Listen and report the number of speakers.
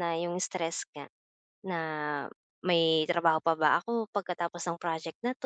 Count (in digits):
1